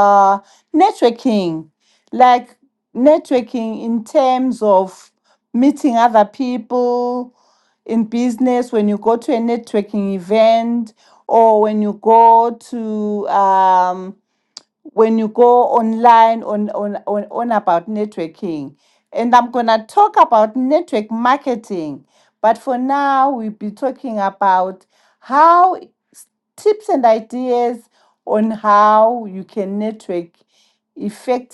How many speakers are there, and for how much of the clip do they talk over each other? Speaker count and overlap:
1, no overlap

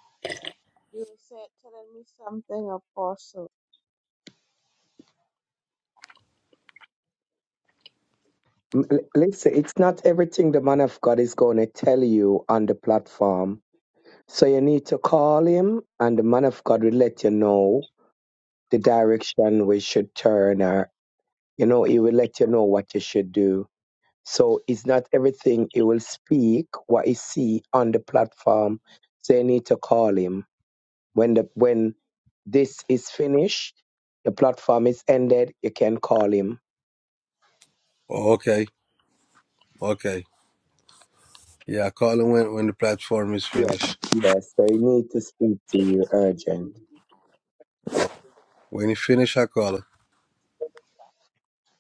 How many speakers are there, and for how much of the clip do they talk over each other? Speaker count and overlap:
3, under 1%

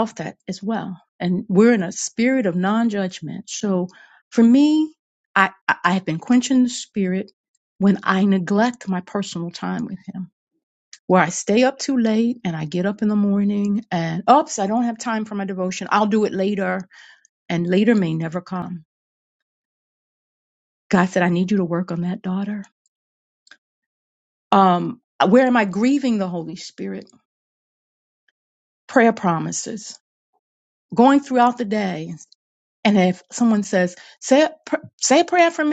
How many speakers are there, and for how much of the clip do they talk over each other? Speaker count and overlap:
1, no overlap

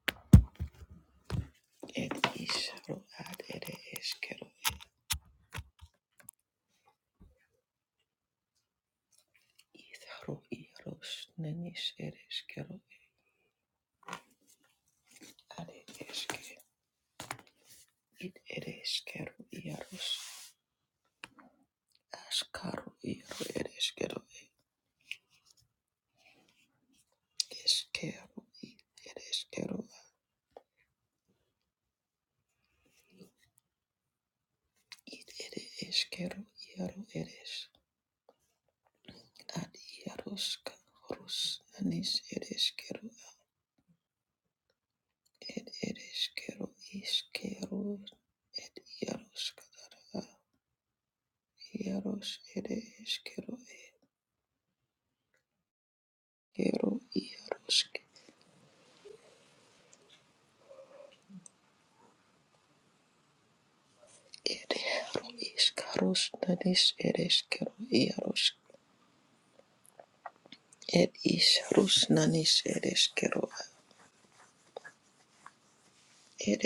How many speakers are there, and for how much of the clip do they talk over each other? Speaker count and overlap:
1, no overlap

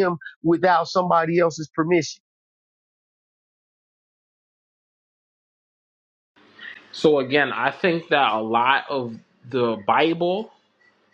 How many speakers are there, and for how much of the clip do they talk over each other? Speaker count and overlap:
2, no overlap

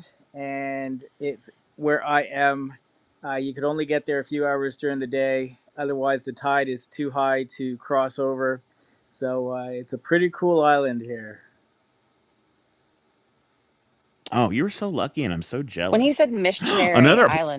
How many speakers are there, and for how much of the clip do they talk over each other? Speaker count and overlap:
3, about 5%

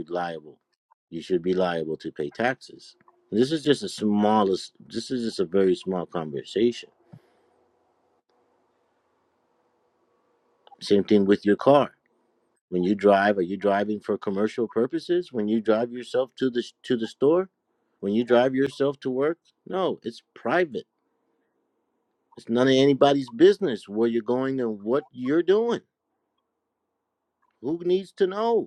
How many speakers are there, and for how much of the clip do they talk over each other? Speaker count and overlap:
1, no overlap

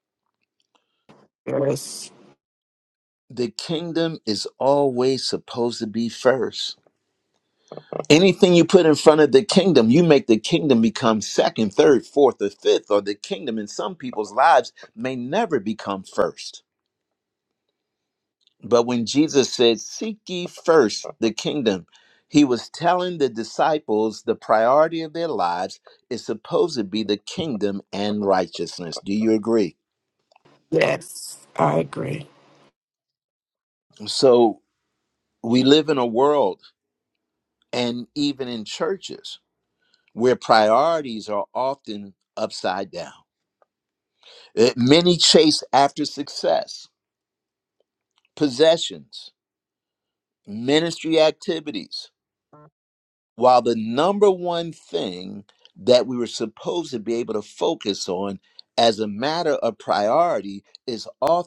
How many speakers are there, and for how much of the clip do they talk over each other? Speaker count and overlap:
2, no overlap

